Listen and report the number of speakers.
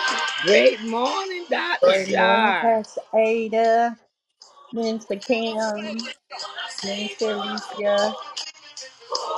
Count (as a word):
two